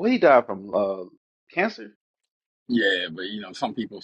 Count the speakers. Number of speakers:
2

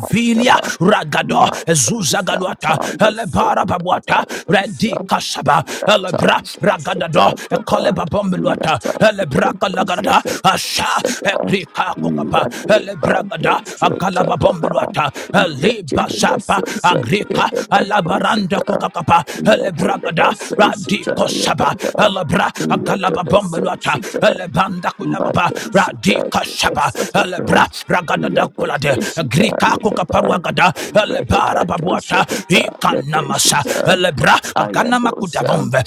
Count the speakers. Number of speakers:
2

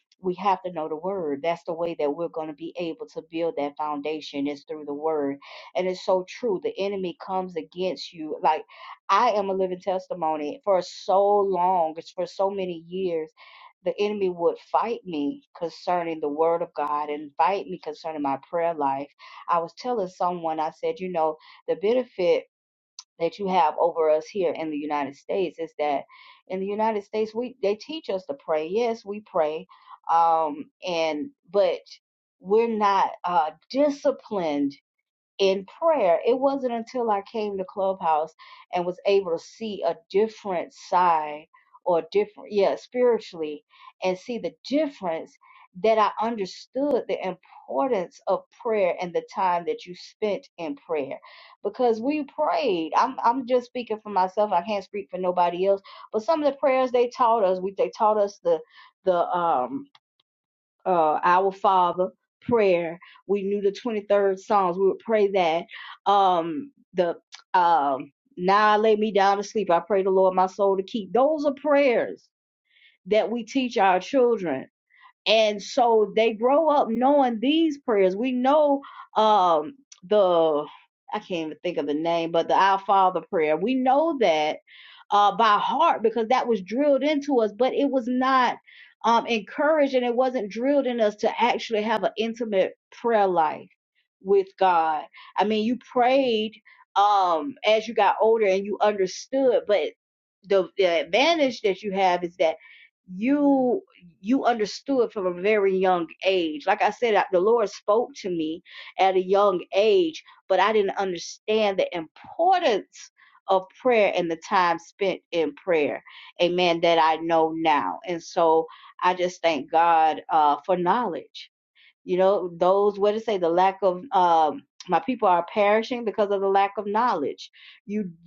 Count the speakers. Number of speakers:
1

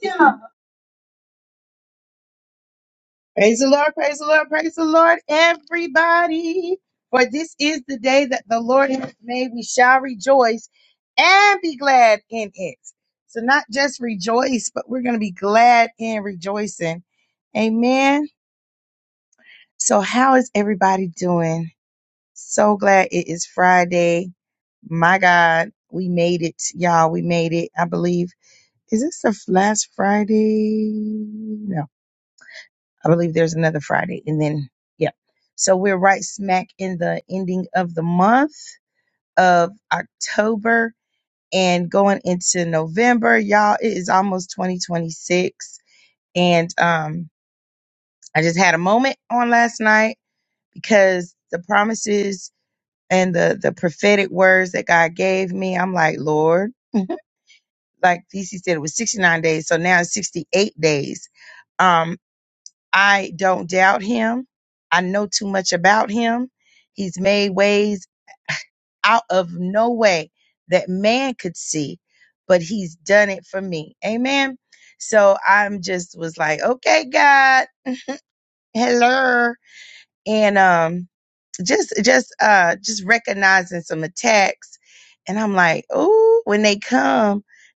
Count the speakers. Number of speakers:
1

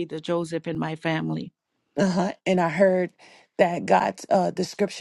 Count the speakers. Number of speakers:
2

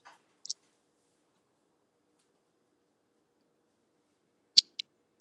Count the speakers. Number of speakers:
0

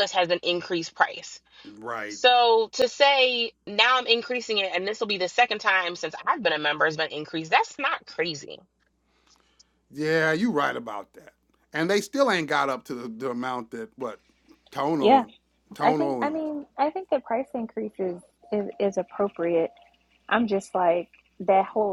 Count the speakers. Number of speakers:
3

